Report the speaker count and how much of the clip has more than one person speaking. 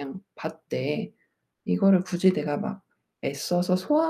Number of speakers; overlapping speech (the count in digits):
1, no overlap